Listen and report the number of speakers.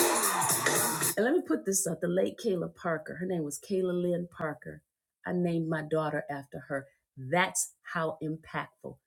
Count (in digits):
1